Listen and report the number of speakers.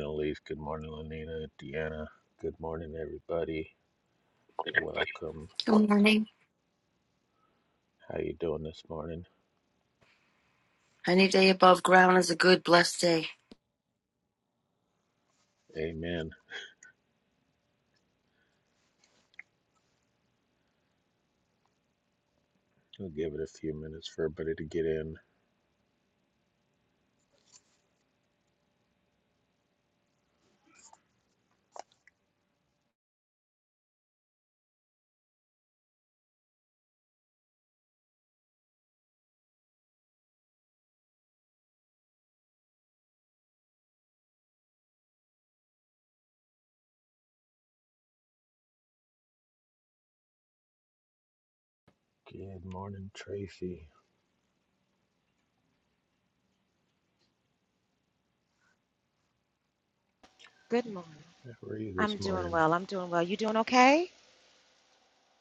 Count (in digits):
3